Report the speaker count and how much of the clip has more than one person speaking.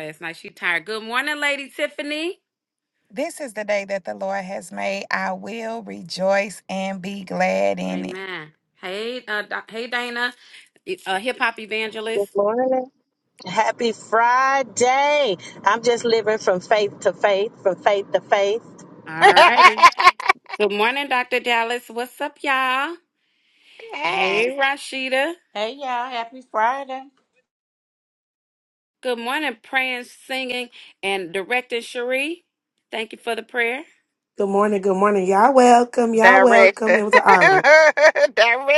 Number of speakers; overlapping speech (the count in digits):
5, about 4%